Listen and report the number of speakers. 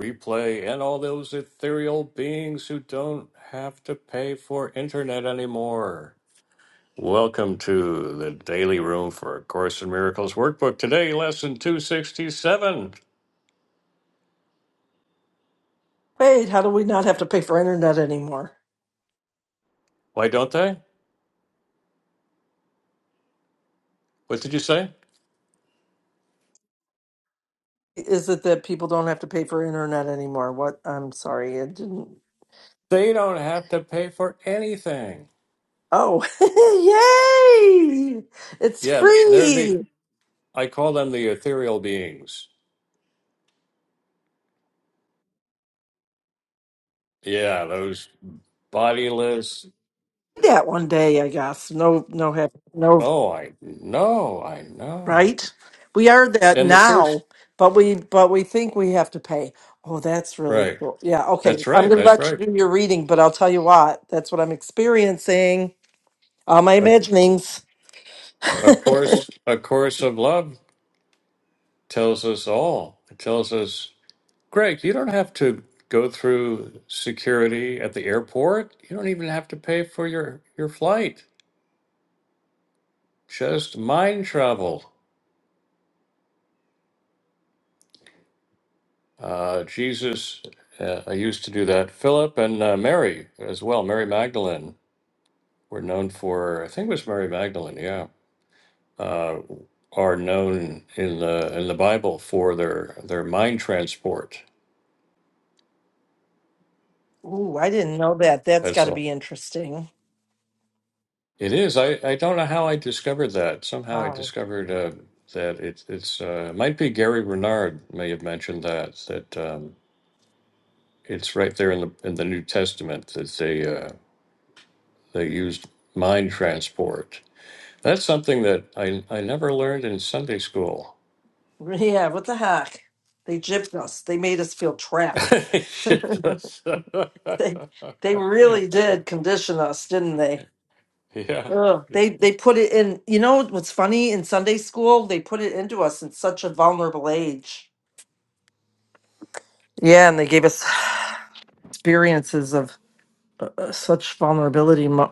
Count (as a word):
two